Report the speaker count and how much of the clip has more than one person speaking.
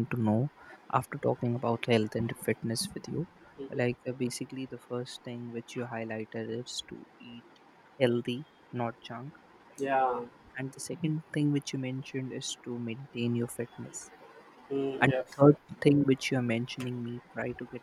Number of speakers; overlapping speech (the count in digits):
2, about 2%